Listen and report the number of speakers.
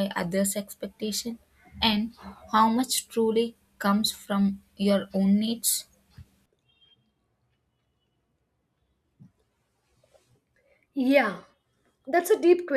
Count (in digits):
2